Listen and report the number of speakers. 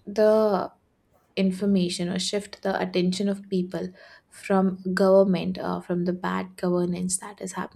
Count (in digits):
1